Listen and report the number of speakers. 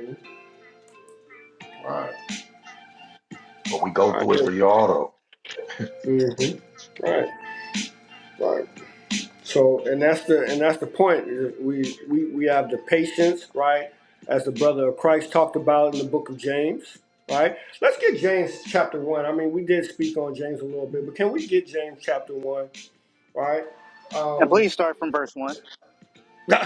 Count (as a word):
three